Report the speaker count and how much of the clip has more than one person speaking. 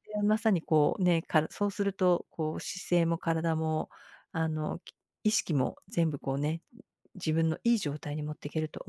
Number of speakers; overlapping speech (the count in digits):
1, no overlap